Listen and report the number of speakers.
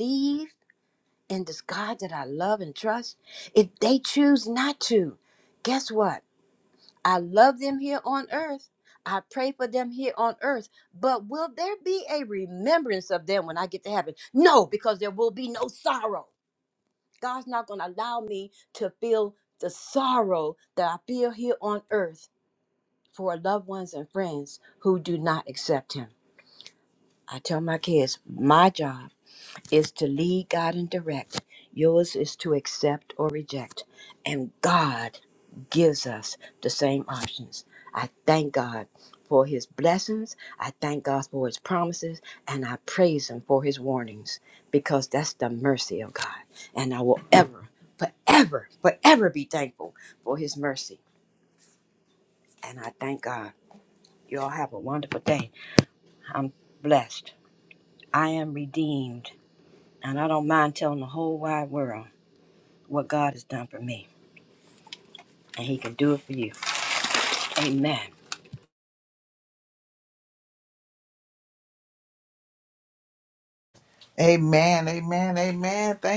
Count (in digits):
2